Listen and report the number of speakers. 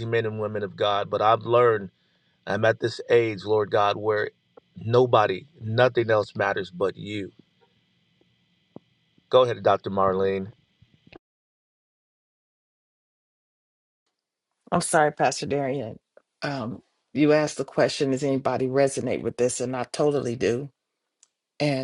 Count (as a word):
two